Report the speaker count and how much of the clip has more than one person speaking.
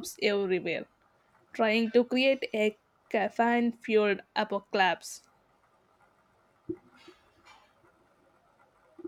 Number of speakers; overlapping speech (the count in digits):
1, no overlap